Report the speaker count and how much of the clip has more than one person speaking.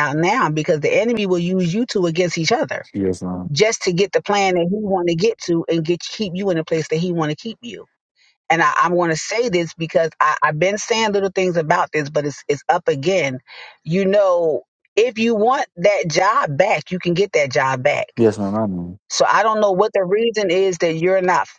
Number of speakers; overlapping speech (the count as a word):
two, no overlap